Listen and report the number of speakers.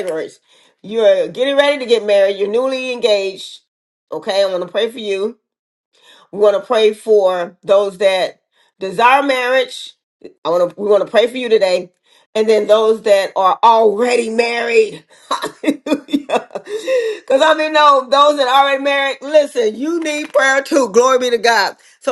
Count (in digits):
1